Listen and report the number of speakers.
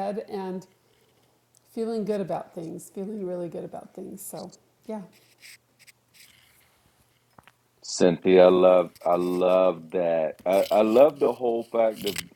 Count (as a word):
two